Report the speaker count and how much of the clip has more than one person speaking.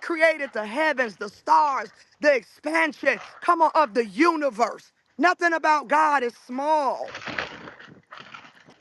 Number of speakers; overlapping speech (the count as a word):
one, no overlap